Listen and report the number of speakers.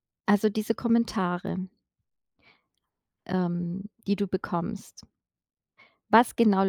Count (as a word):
one